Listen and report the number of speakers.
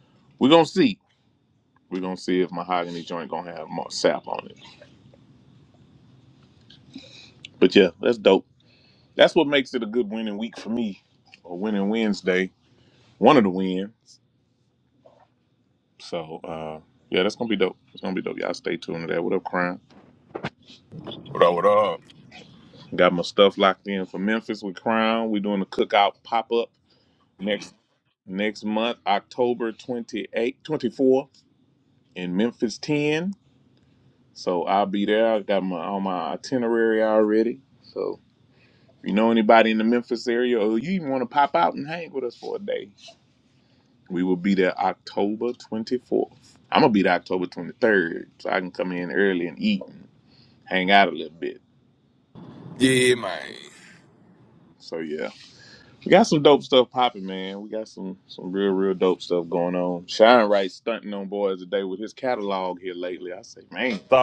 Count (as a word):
two